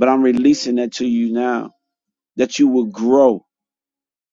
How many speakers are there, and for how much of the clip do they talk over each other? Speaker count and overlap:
one, no overlap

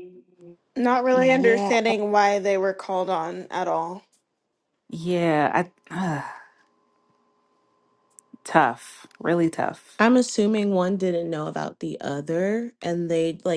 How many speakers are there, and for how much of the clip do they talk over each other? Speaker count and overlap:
three, about 5%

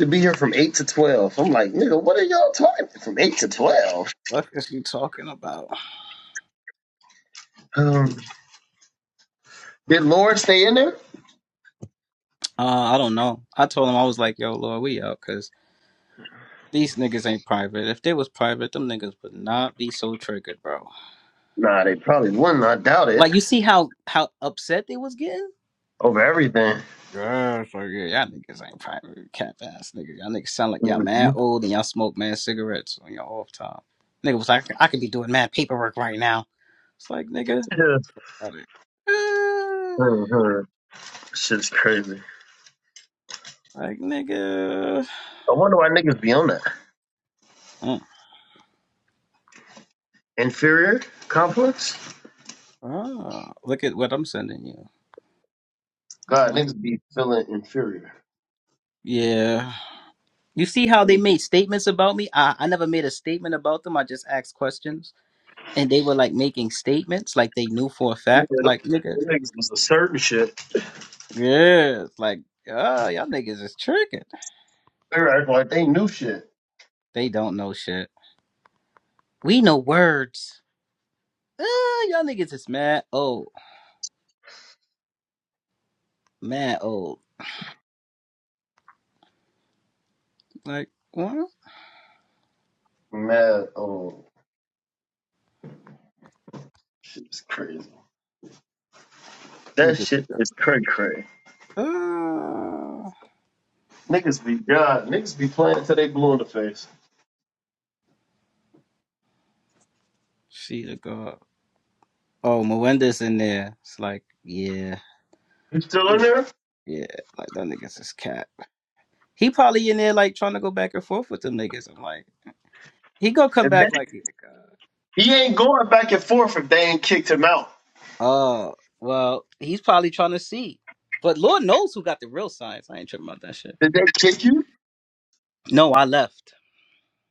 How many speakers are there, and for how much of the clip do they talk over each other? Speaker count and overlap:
two, about 2%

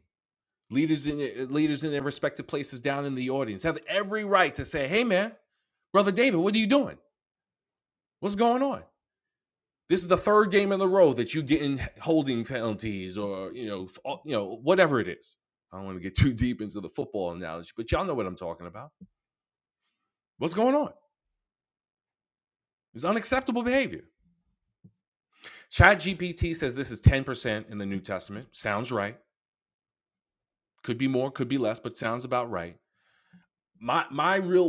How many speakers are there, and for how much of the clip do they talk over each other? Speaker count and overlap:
one, no overlap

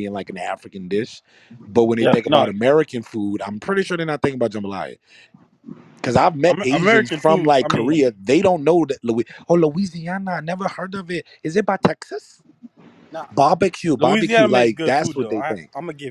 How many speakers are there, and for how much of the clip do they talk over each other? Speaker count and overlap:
two, about 22%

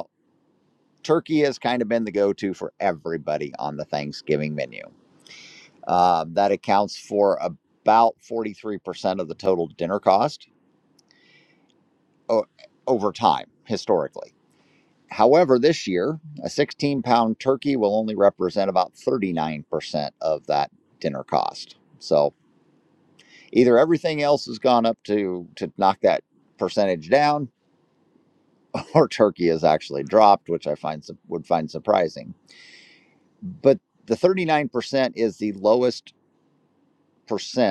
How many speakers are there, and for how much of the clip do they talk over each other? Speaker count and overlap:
one, no overlap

